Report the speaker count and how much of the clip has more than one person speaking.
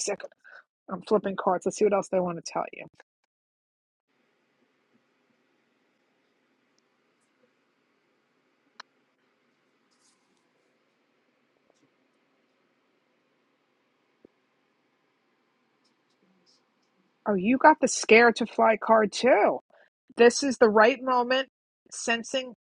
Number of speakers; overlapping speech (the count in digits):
1, no overlap